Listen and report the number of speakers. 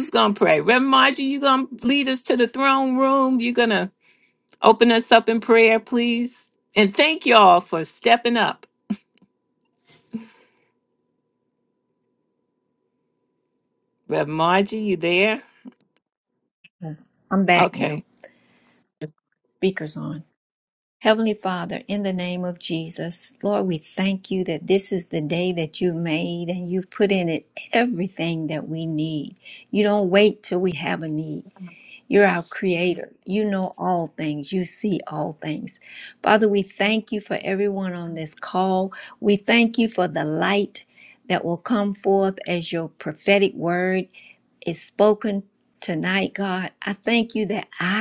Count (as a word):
two